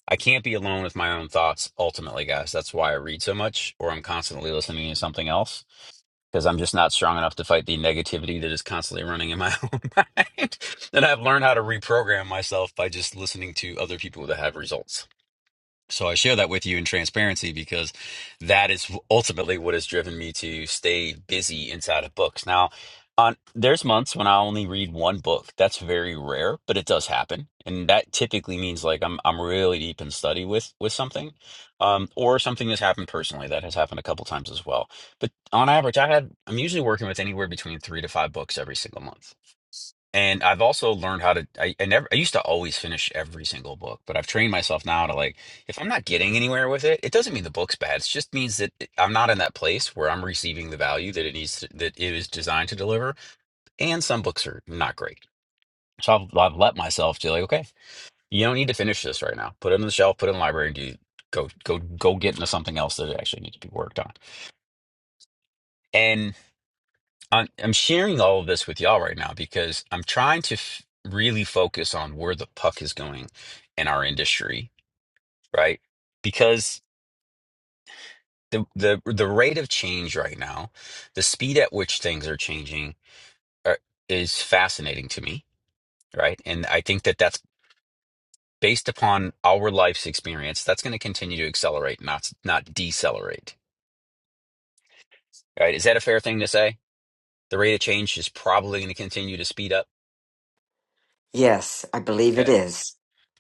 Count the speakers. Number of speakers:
two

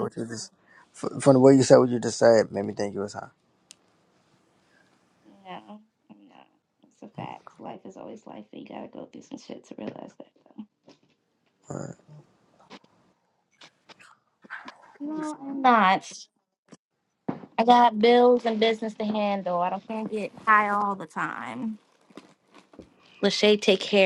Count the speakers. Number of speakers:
two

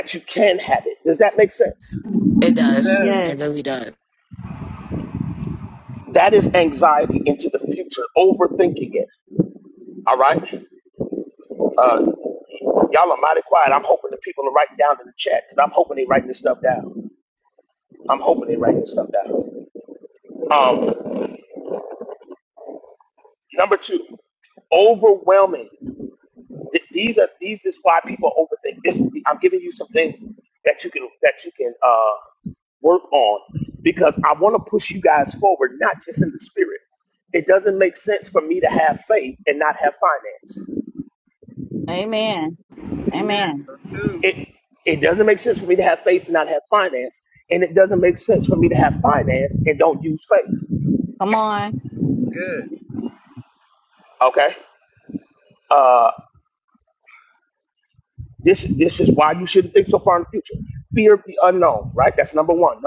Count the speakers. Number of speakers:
four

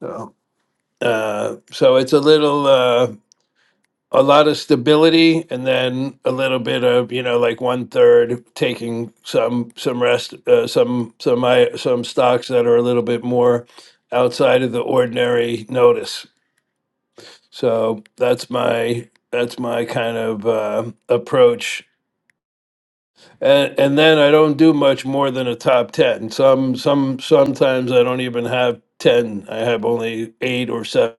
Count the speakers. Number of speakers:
one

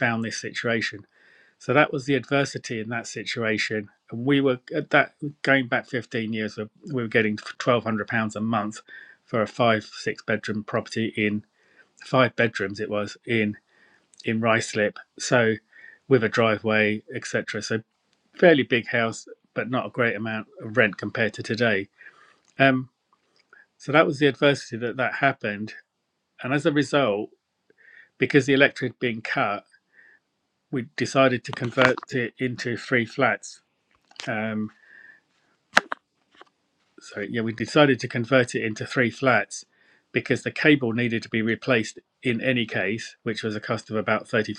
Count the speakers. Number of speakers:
one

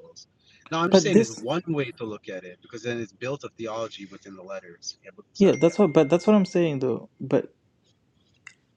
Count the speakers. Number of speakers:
two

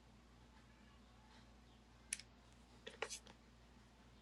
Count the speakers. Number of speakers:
zero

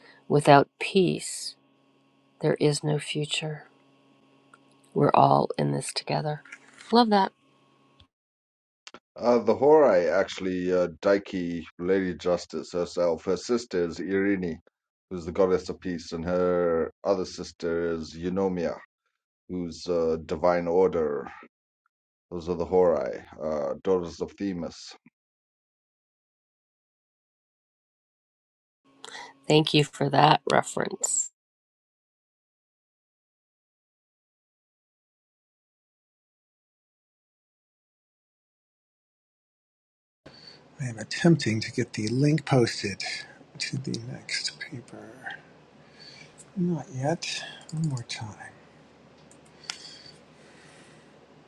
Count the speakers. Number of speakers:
three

